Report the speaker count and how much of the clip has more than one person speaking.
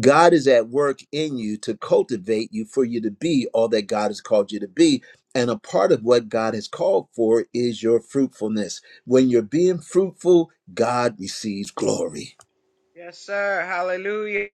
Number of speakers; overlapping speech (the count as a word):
two, no overlap